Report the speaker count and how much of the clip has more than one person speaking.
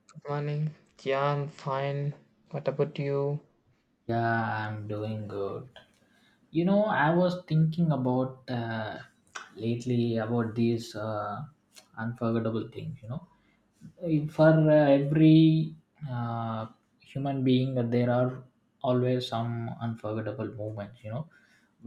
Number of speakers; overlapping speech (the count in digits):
2, no overlap